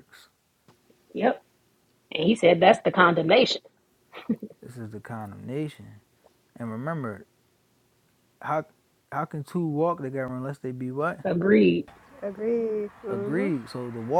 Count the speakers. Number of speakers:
3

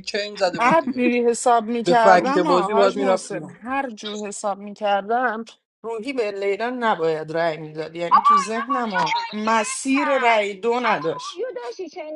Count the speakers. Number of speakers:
3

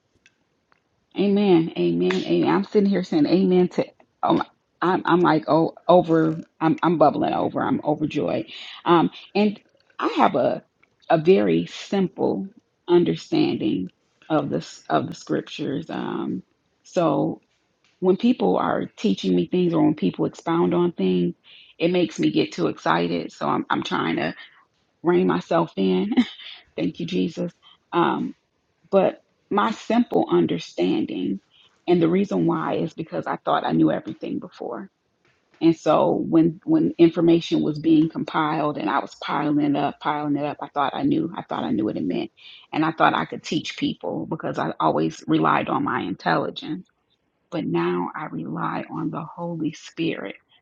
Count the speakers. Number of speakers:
1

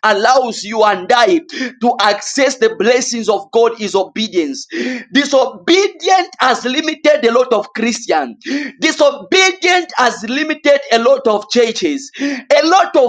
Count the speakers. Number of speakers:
1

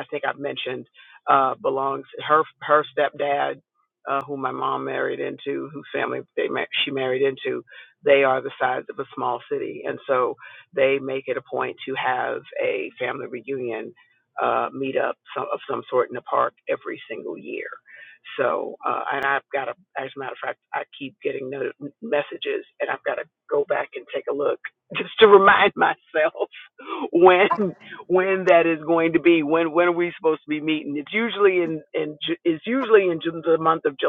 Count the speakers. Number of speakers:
1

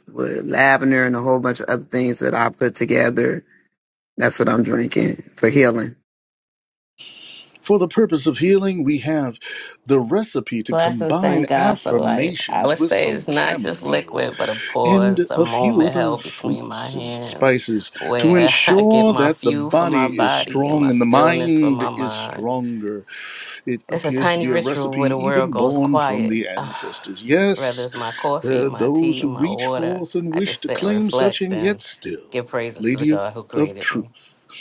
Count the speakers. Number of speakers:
3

